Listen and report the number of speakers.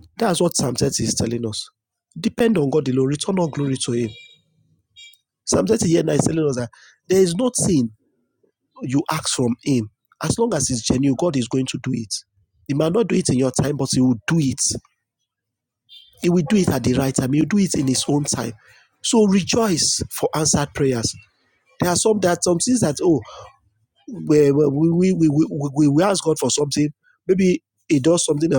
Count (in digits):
1